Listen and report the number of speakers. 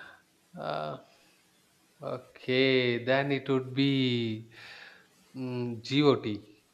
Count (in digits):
1